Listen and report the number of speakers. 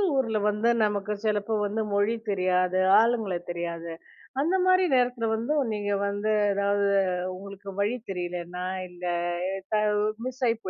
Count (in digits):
1